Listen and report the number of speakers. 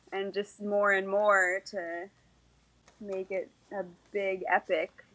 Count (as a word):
one